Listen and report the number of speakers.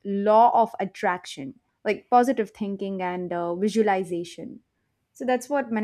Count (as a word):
one